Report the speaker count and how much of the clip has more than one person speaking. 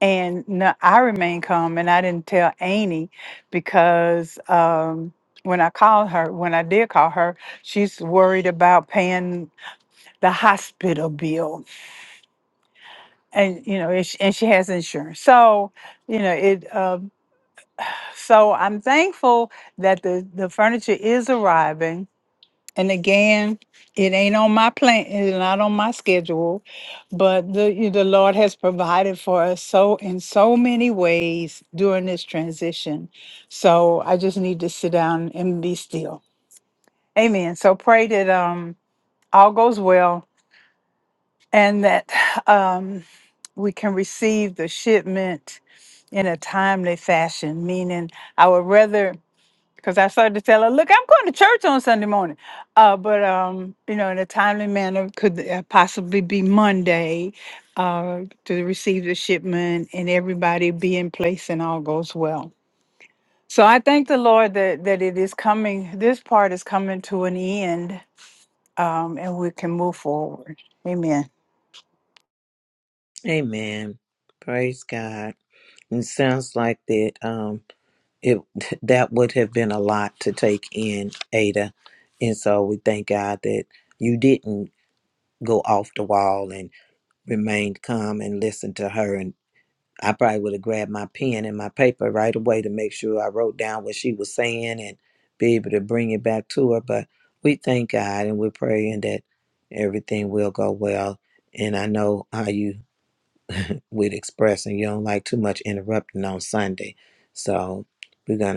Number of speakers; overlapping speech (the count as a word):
two, no overlap